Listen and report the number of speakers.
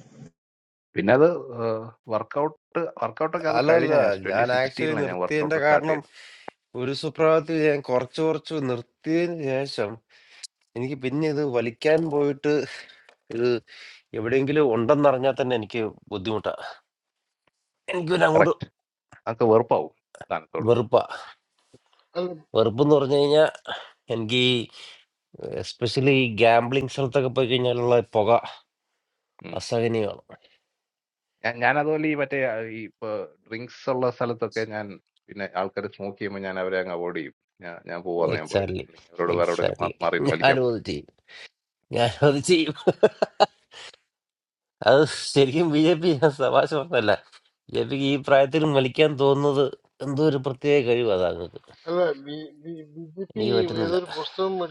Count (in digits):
3